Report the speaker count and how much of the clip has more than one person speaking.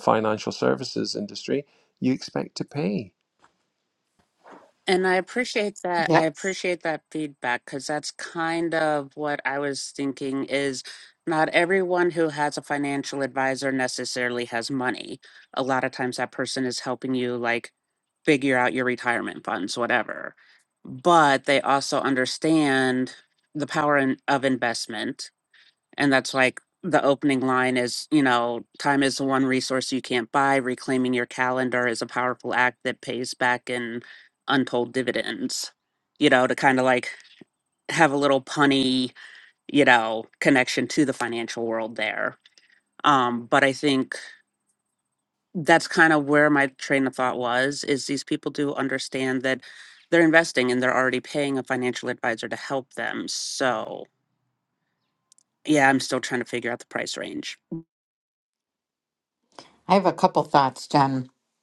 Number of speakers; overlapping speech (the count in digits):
3, under 1%